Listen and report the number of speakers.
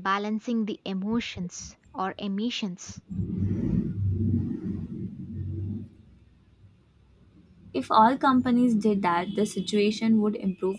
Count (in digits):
2